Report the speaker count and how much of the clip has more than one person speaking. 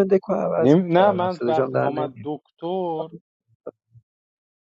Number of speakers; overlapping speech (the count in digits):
2, about 32%